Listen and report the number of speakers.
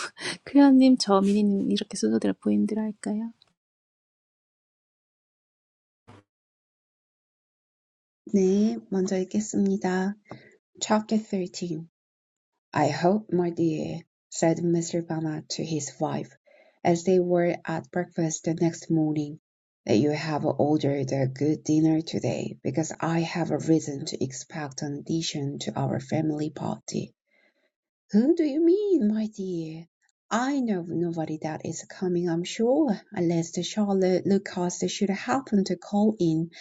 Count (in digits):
2